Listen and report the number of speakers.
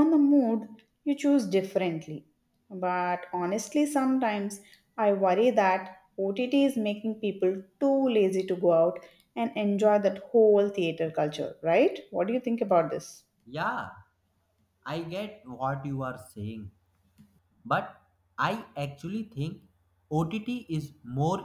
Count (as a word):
two